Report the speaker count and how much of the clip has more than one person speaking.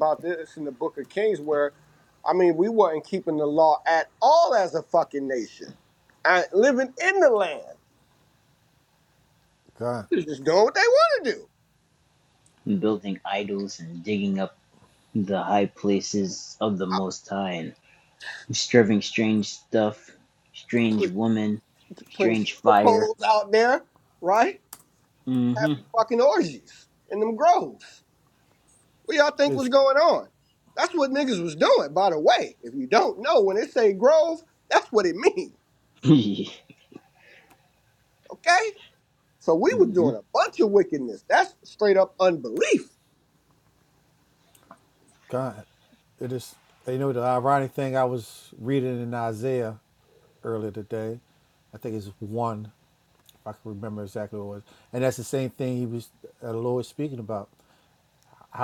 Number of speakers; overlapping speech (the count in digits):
3, about 3%